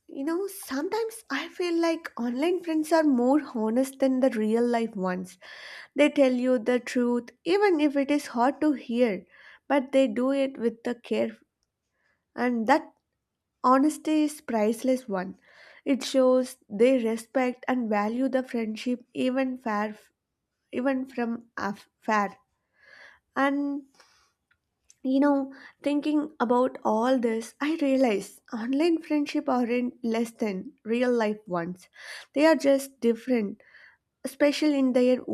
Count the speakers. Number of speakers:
one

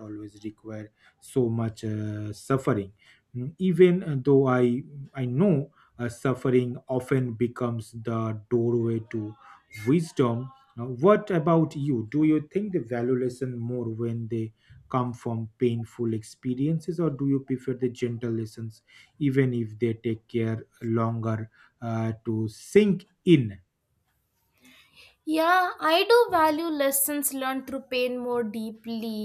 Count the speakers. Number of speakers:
two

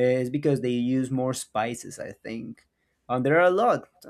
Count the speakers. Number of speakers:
one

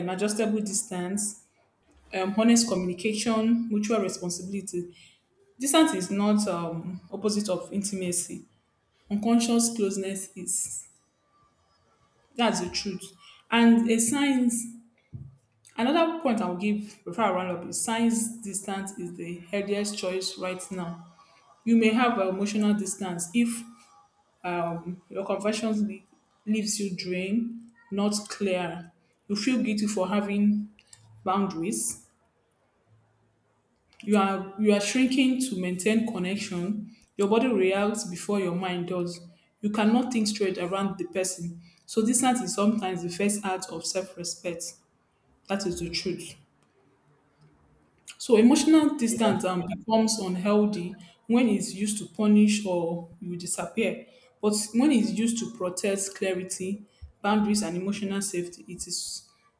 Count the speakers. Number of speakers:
one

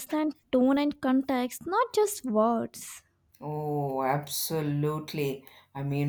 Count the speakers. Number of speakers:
two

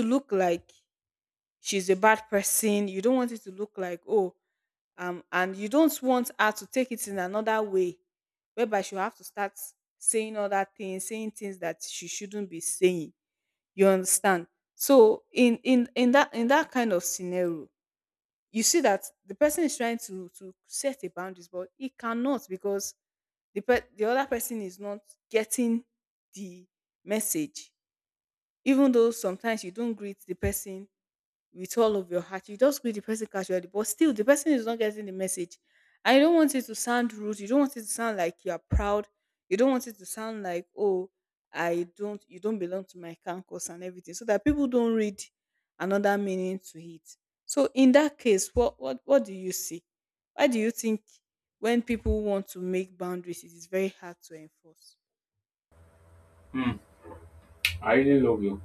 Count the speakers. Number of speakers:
two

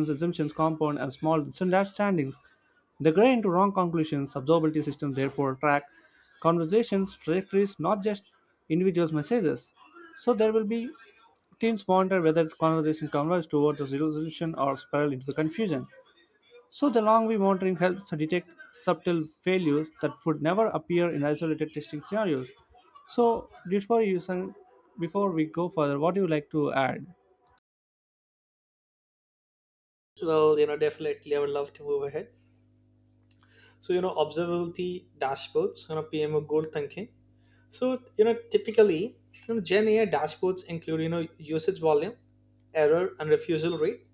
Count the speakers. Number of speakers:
two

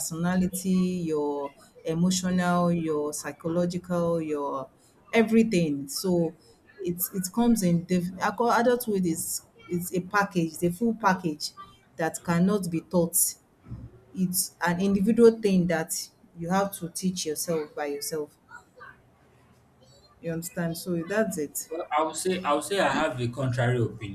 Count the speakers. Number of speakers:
two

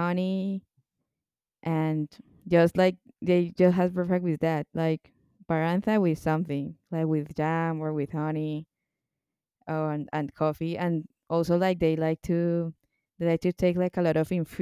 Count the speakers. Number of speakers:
one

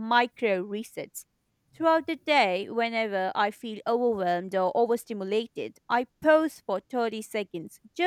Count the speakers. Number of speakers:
one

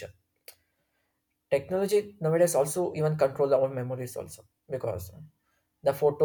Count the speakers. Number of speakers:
one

